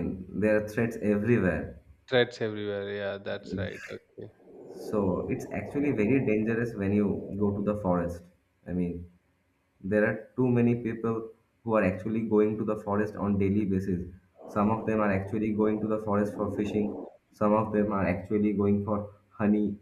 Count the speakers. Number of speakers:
2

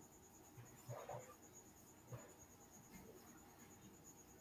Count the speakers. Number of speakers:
0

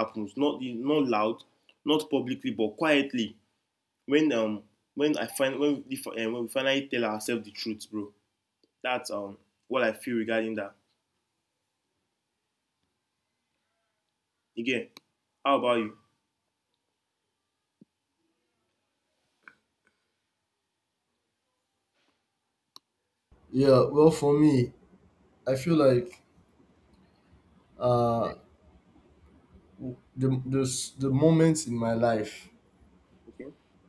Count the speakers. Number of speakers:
2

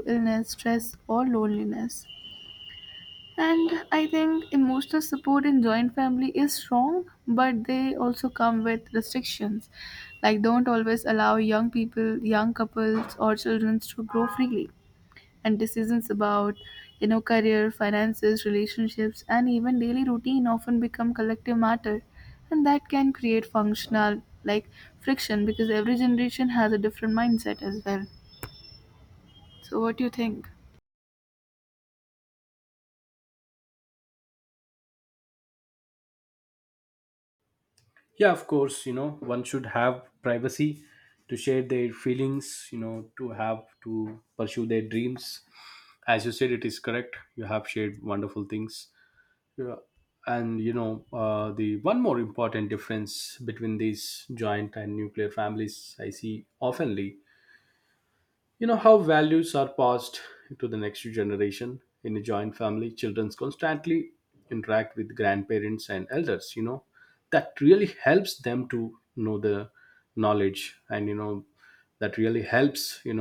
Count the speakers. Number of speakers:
2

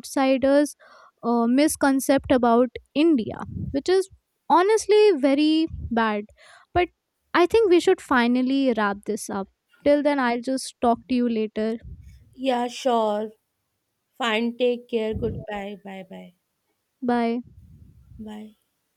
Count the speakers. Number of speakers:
2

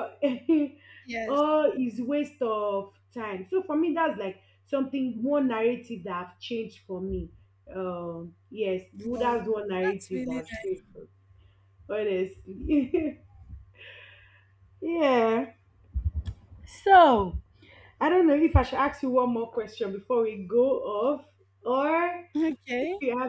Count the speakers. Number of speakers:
2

